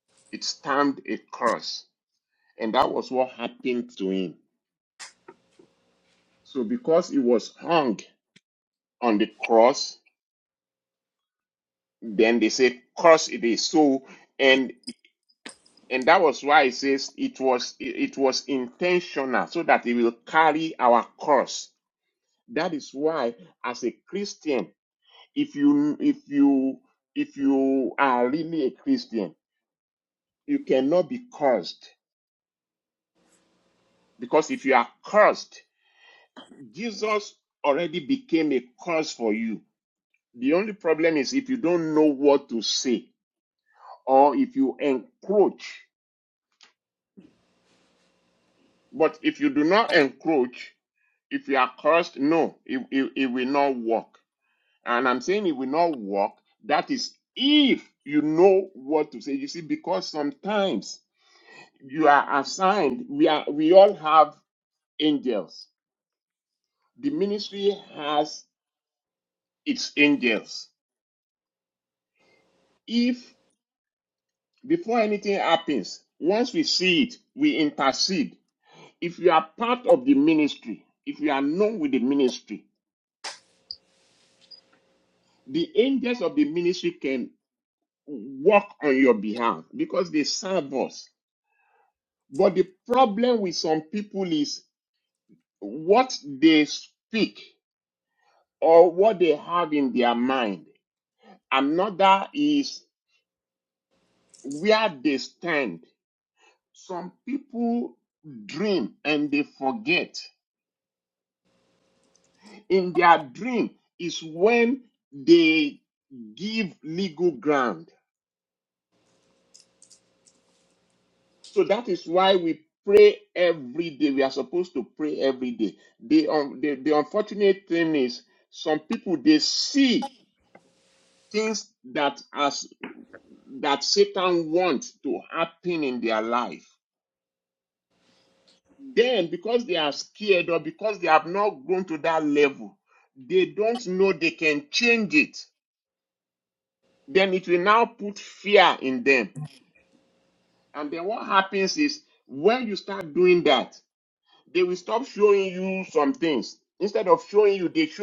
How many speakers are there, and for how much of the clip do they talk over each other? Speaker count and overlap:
one, no overlap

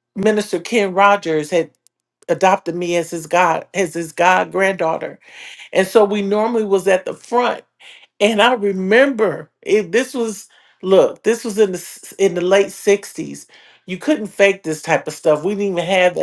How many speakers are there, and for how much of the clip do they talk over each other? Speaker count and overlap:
one, no overlap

